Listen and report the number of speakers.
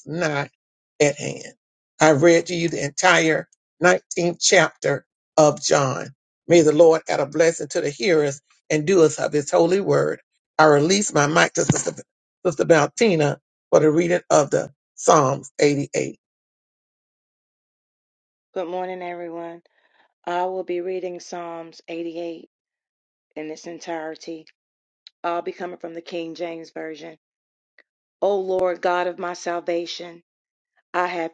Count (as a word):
two